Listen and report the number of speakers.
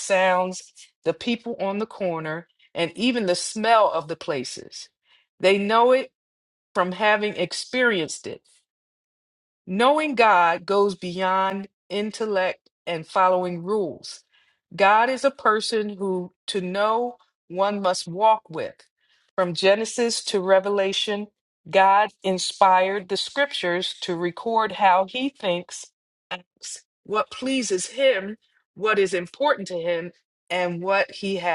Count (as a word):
one